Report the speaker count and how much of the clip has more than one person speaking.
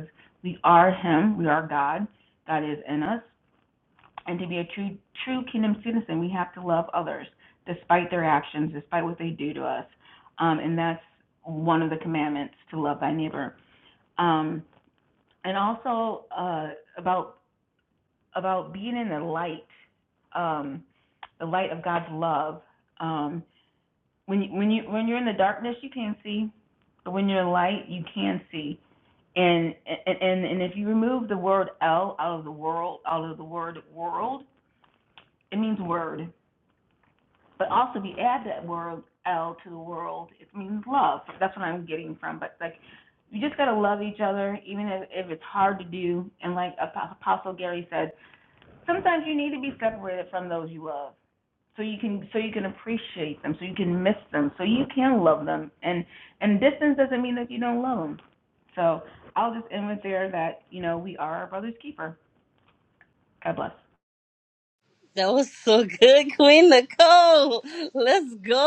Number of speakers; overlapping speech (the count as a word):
two, no overlap